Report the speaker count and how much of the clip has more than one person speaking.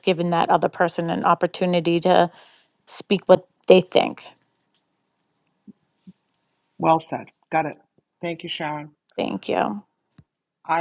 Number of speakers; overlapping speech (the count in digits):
2, no overlap